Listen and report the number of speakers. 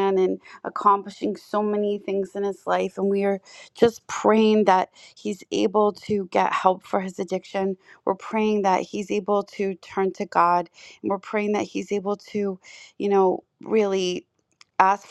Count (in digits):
1